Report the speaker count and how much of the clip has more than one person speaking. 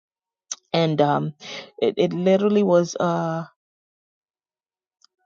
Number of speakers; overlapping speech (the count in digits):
1, no overlap